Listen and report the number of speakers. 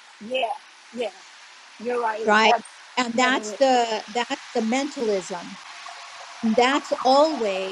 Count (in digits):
2